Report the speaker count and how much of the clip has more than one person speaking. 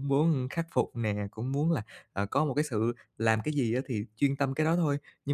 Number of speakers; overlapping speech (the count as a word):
one, no overlap